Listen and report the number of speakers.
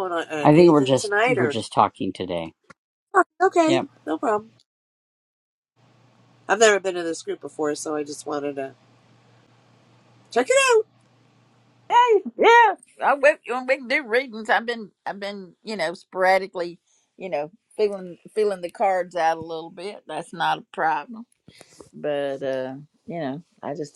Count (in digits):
3